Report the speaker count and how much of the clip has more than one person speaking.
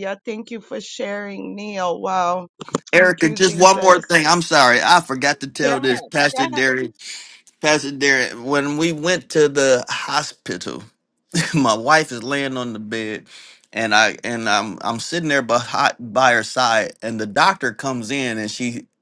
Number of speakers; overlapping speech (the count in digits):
2, about 8%